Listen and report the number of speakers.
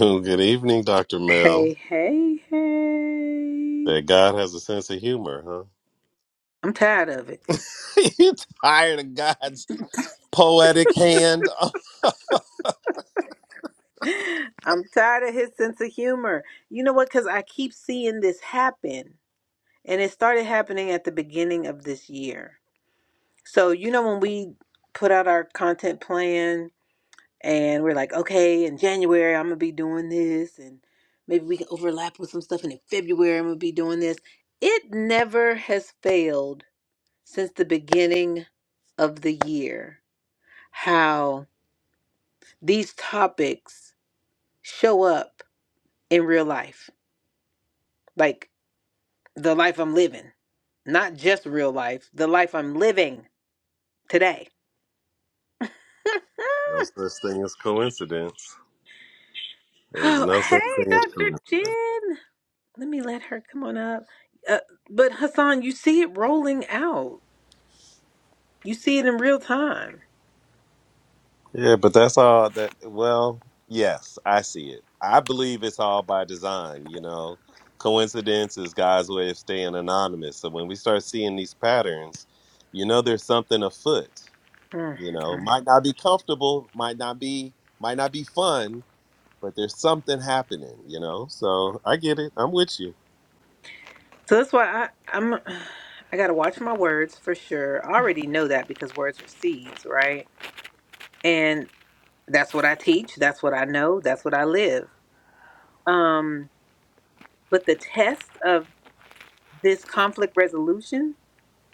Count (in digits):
2